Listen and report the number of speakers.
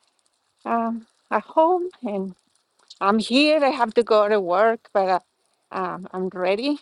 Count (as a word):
one